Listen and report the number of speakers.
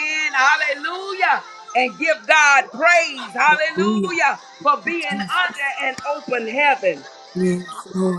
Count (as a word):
two